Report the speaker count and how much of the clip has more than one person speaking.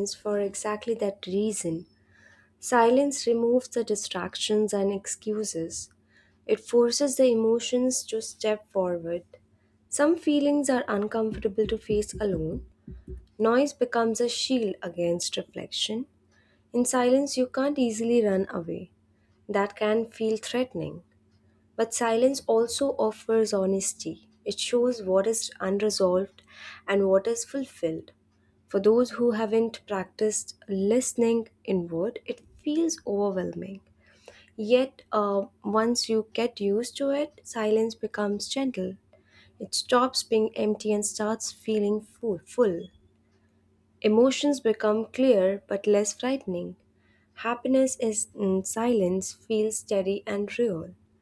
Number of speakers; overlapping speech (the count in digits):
1, no overlap